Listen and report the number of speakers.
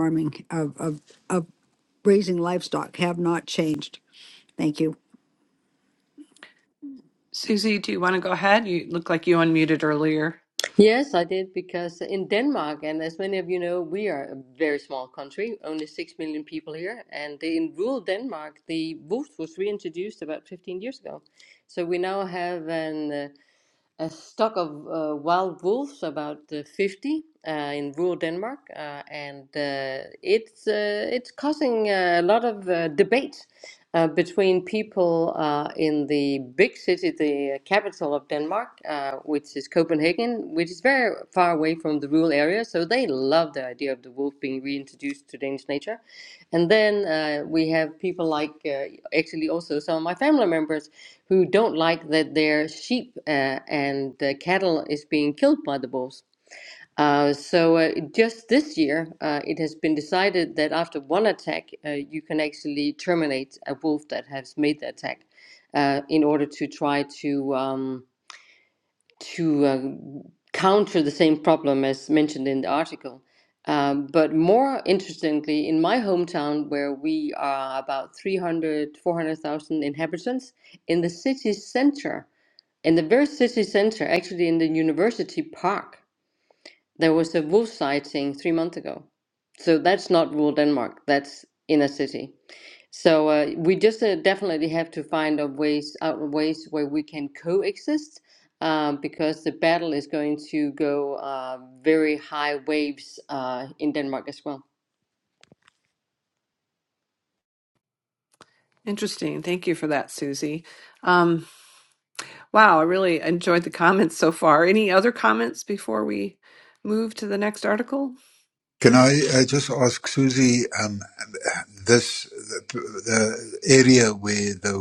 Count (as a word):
four